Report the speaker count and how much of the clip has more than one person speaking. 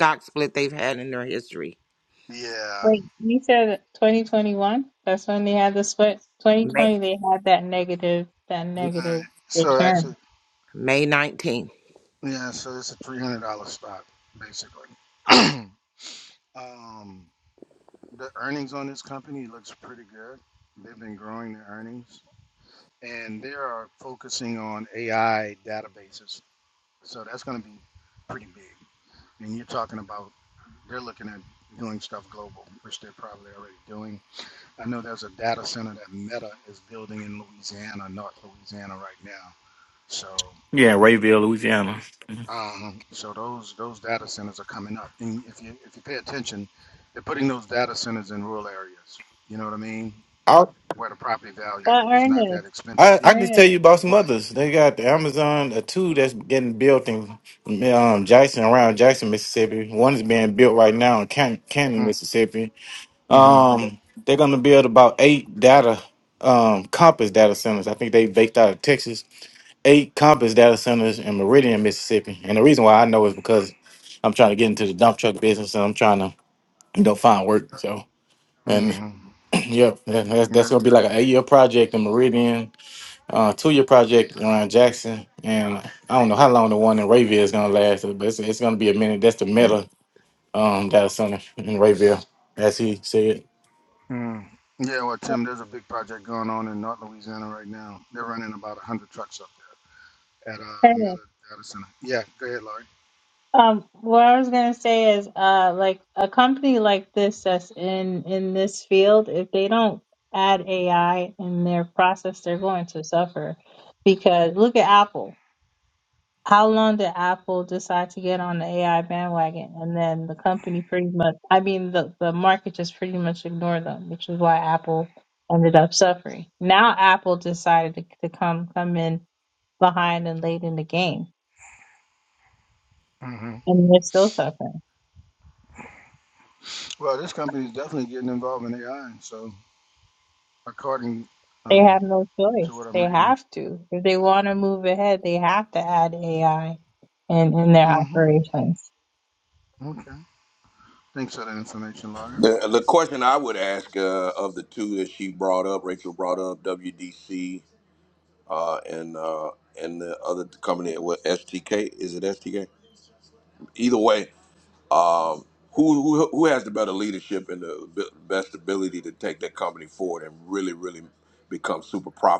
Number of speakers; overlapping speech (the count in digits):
5, about 3%